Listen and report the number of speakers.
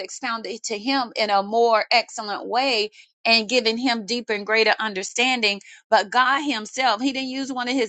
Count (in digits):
1